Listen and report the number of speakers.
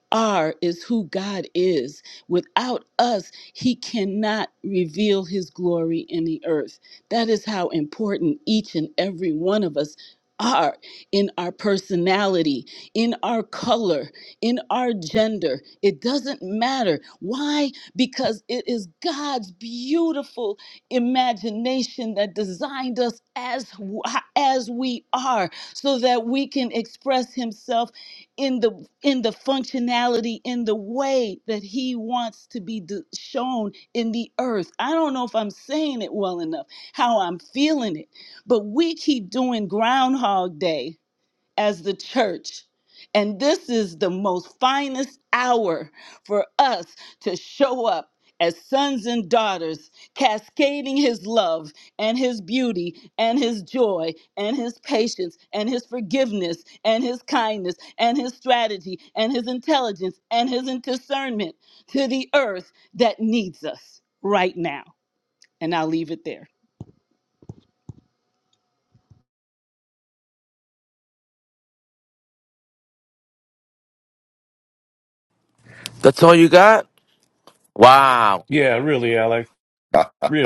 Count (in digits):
3